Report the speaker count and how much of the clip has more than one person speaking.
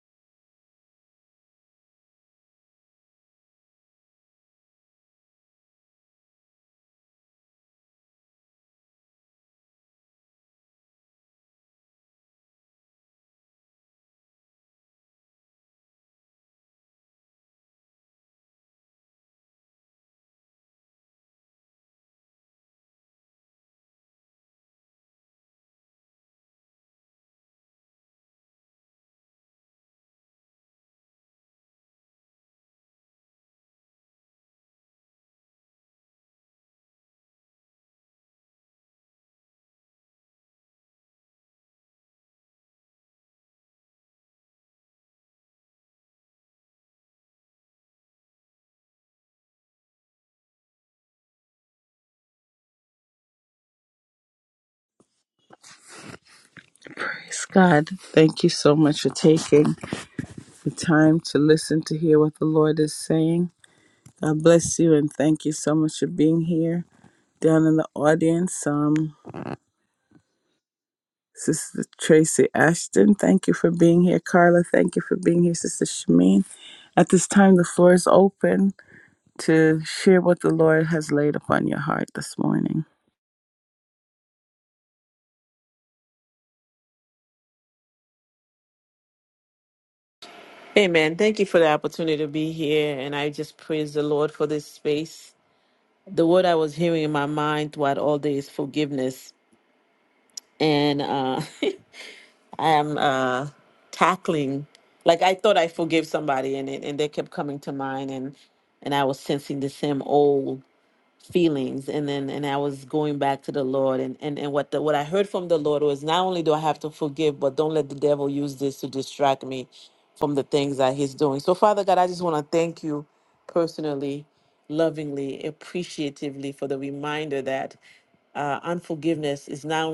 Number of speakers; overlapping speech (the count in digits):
2, no overlap